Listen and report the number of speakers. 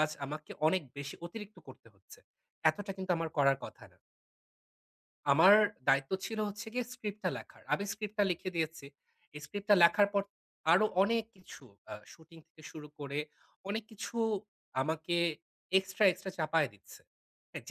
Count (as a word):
one